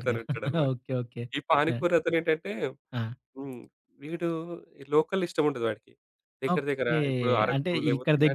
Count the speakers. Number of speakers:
two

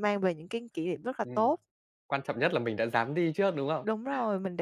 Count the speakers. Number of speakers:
two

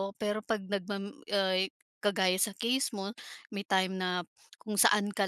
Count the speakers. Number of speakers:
one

